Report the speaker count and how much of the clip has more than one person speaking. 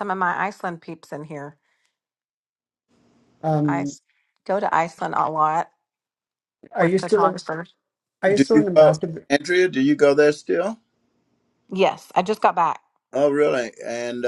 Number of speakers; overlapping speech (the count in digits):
3, about 12%